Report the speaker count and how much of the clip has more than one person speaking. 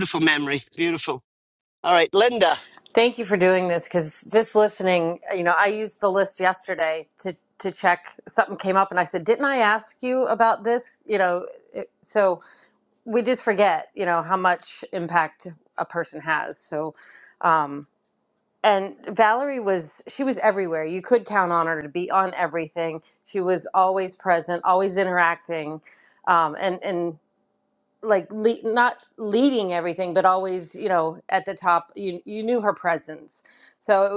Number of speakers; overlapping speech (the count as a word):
two, no overlap